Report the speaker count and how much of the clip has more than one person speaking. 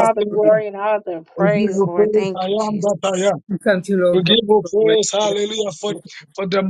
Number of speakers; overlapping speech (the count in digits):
3, about 54%